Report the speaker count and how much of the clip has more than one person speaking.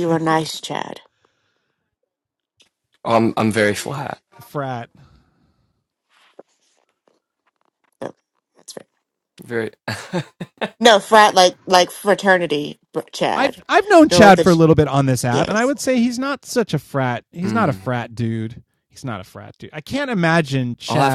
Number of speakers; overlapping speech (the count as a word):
three, about 7%